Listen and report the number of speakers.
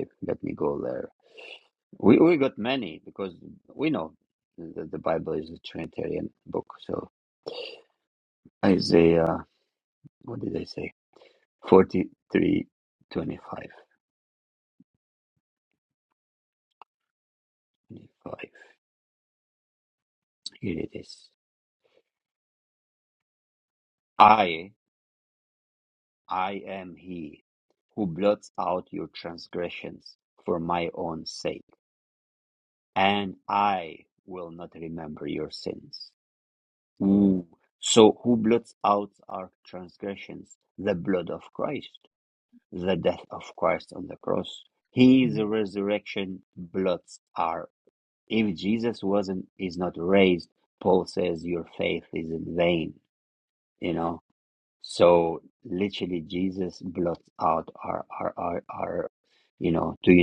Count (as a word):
one